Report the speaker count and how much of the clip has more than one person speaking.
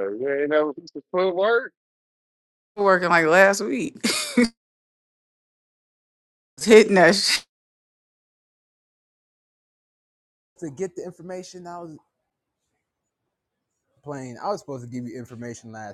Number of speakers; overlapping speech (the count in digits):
3, no overlap